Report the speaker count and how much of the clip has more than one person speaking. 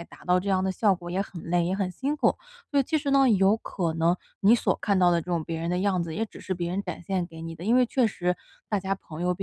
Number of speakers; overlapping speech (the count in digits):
1, no overlap